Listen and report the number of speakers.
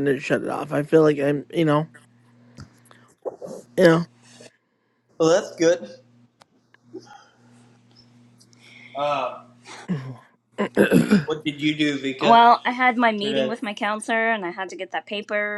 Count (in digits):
3